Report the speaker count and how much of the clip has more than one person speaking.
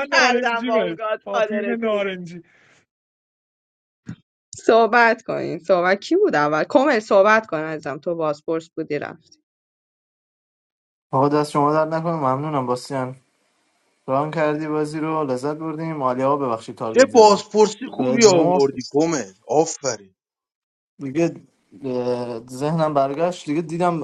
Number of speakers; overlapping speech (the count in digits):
4, about 13%